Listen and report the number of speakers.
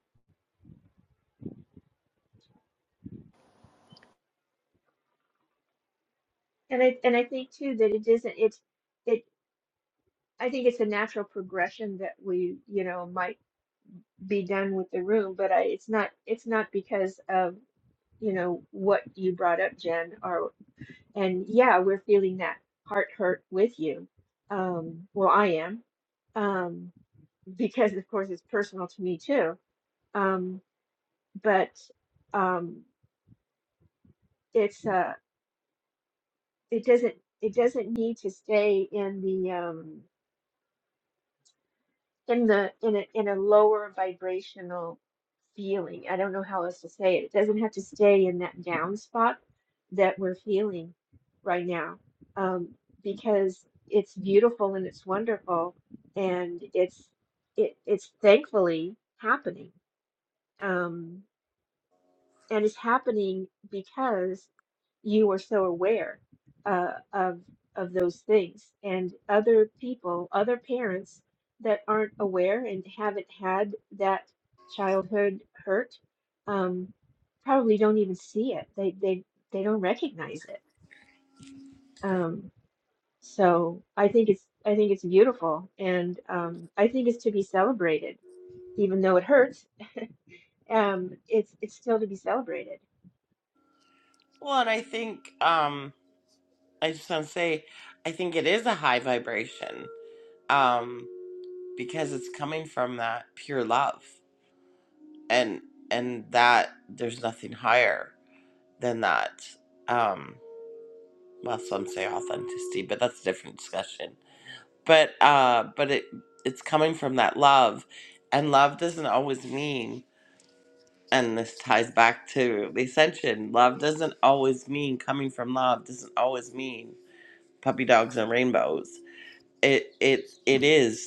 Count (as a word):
two